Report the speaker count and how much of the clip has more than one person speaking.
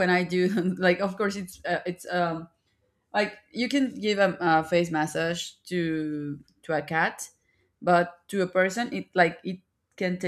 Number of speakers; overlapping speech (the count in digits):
1, no overlap